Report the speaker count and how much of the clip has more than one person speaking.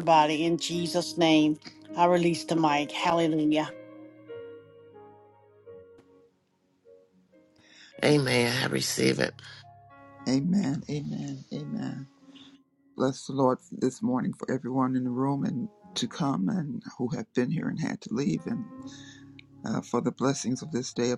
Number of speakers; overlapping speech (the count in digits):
3, no overlap